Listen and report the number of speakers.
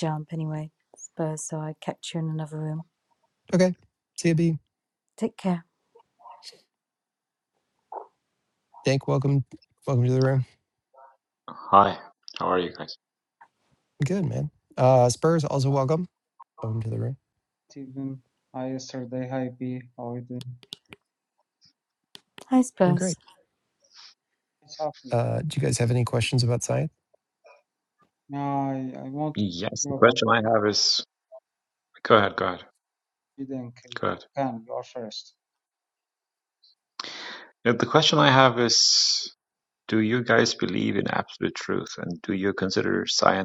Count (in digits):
4